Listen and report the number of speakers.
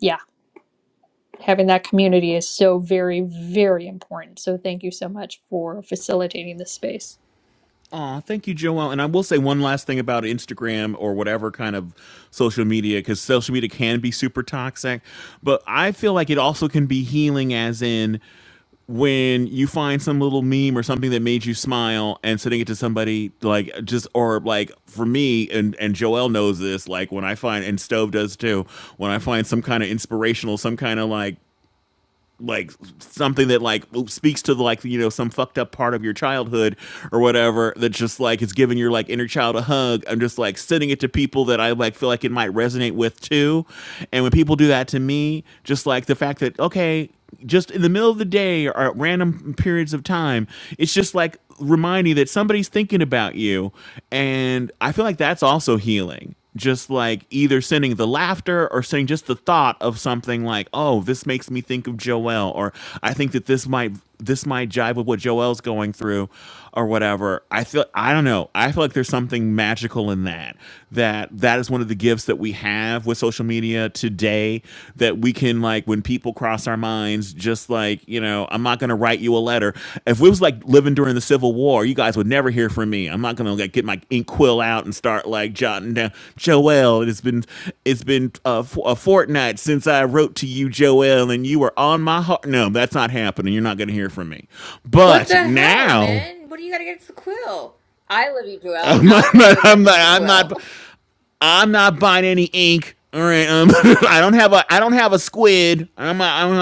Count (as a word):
three